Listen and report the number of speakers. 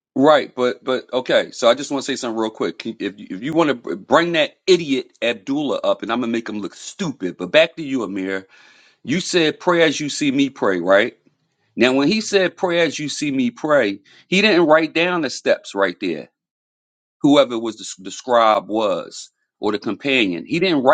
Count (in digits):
1